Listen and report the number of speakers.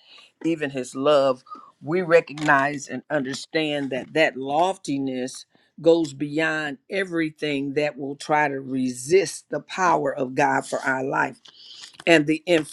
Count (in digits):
1